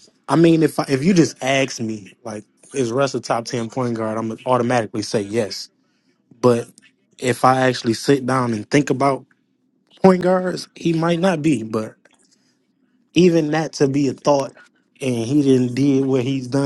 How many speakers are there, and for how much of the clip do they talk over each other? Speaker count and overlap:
1, no overlap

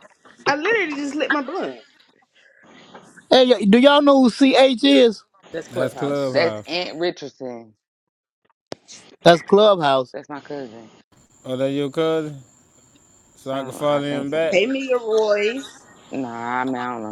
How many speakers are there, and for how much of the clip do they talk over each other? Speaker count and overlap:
4, about 11%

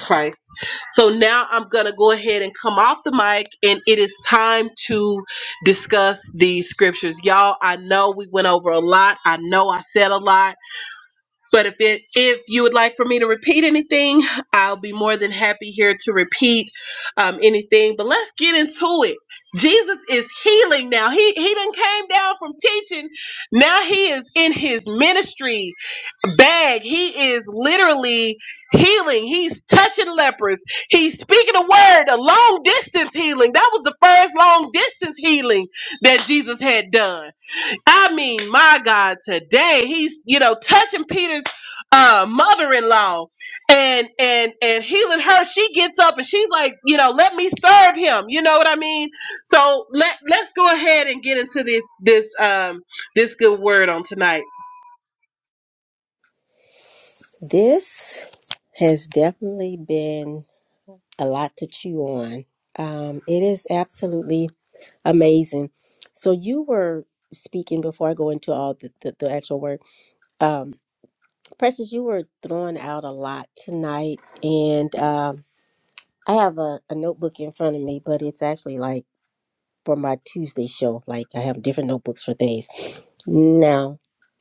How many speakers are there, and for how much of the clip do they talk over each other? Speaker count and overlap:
2, no overlap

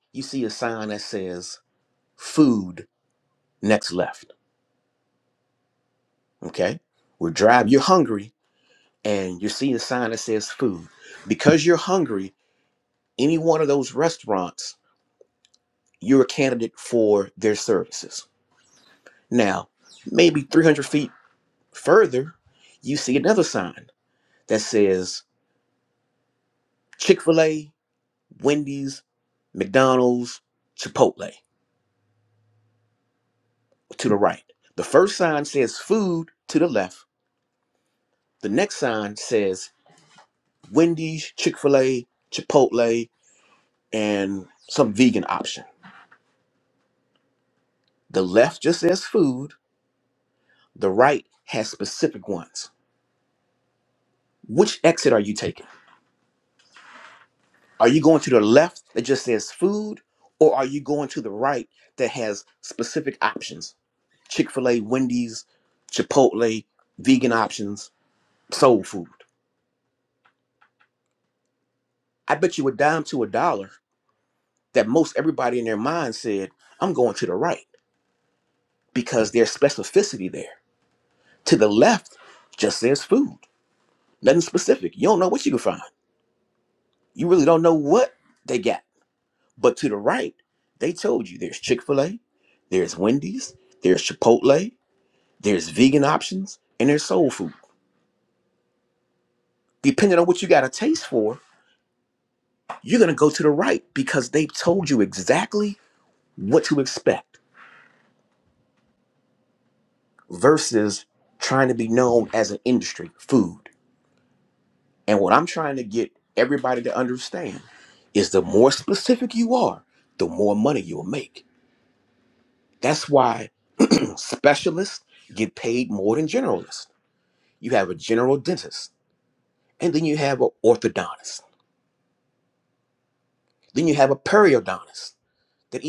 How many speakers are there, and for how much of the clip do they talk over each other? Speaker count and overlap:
1, no overlap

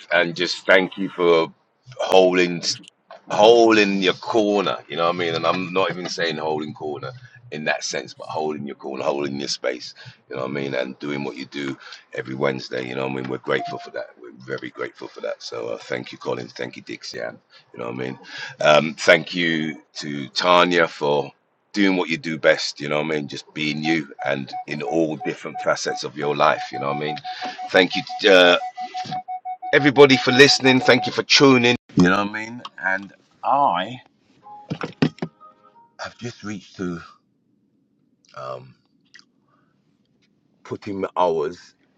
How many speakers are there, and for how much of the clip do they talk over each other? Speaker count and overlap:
1, no overlap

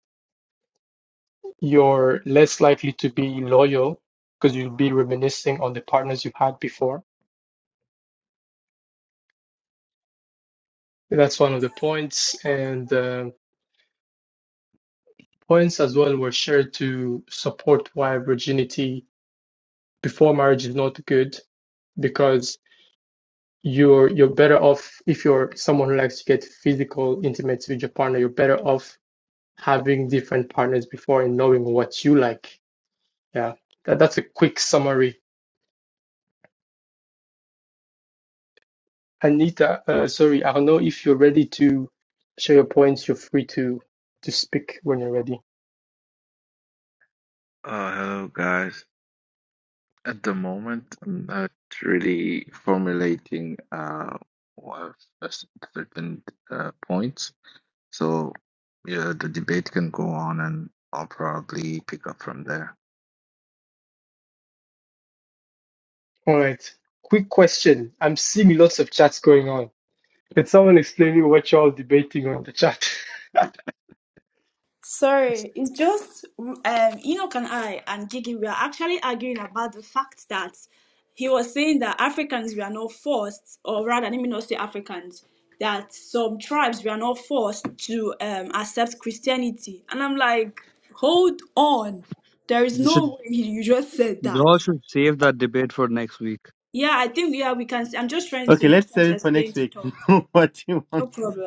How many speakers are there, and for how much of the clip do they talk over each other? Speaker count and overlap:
5, about 2%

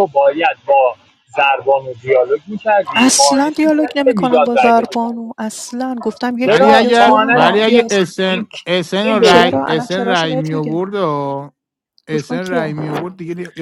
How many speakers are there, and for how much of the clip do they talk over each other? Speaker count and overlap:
3, about 45%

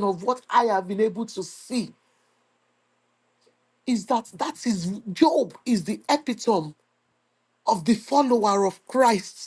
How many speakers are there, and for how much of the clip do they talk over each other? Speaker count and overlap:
1, no overlap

